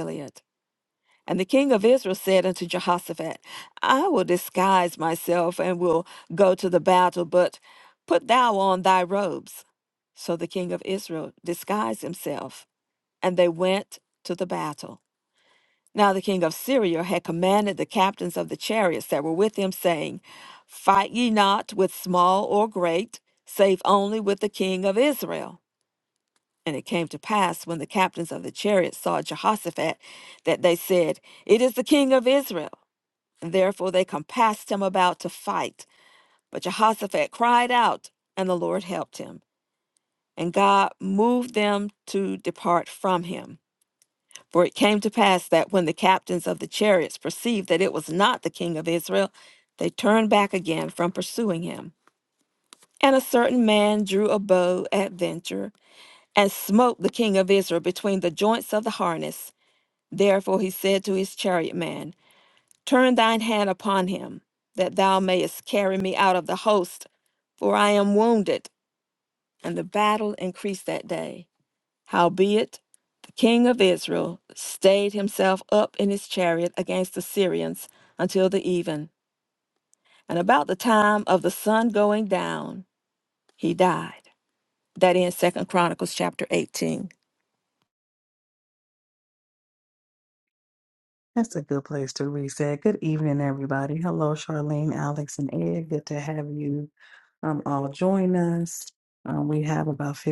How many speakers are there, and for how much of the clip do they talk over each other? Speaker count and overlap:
two, no overlap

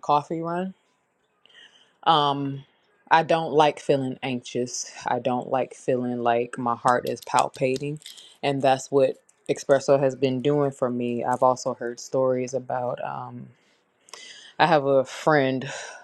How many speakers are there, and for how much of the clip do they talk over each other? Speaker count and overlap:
one, no overlap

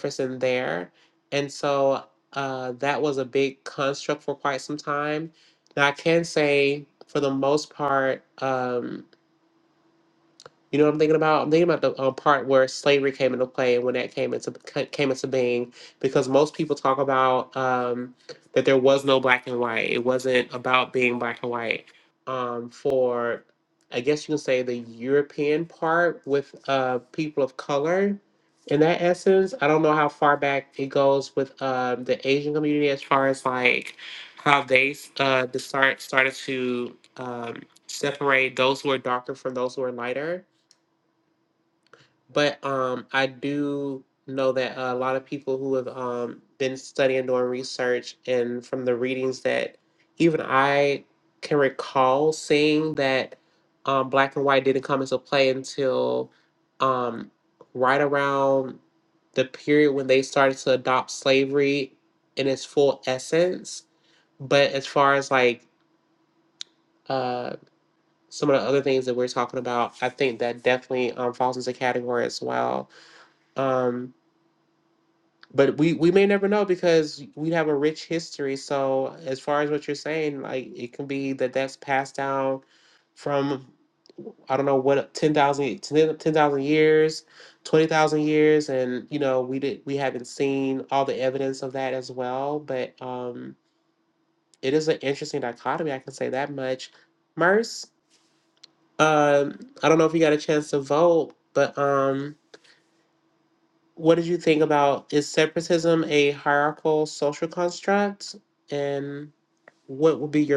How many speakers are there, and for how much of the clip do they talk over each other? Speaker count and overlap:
one, no overlap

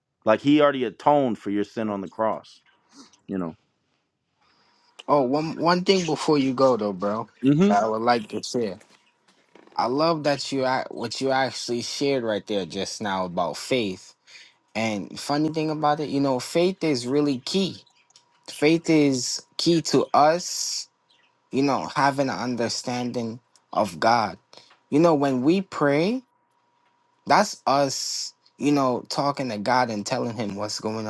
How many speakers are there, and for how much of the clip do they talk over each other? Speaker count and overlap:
two, no overlap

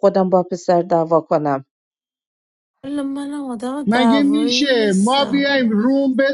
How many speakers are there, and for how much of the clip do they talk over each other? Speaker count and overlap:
three, about 25%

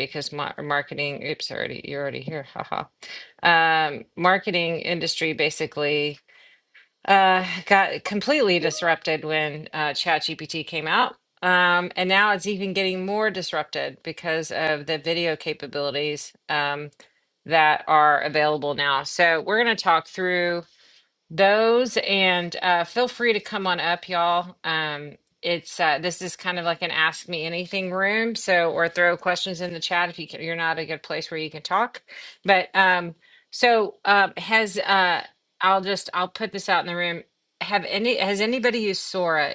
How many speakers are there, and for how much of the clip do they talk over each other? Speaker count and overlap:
one, no overlap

